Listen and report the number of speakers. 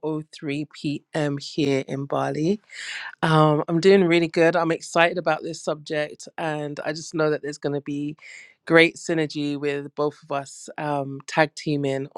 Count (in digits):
1